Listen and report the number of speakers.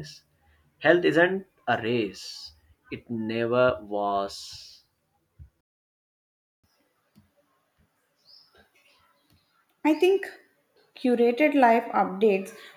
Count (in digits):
2